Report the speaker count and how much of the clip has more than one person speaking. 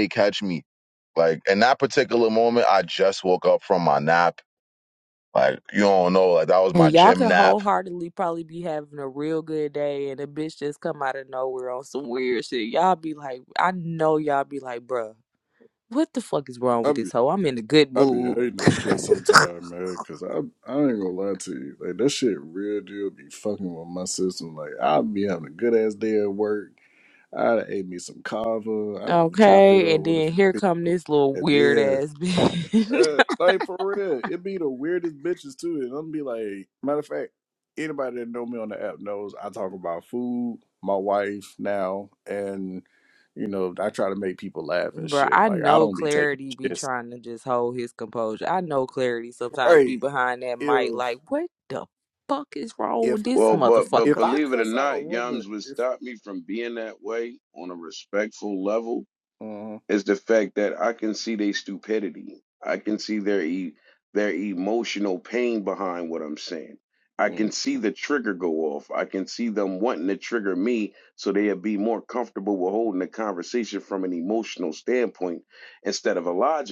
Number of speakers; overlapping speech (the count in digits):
4, about 12%